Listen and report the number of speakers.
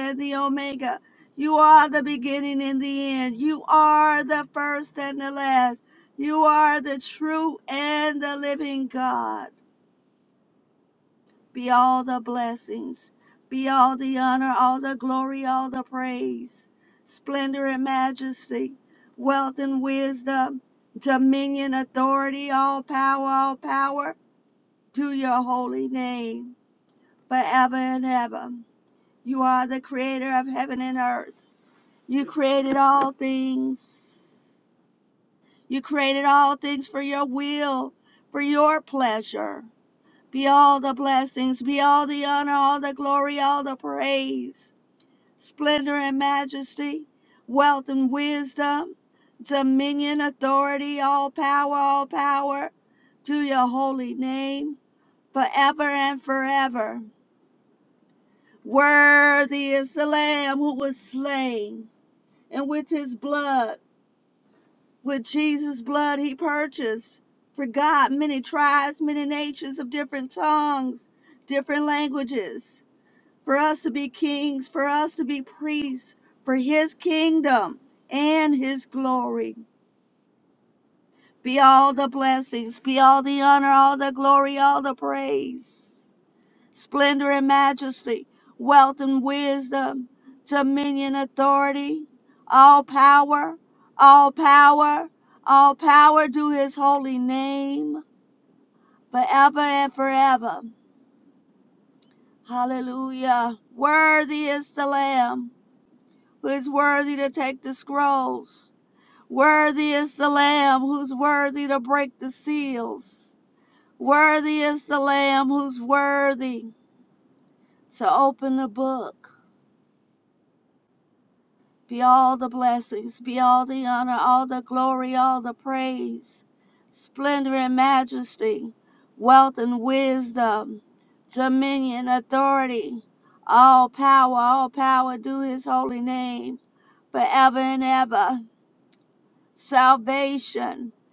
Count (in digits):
1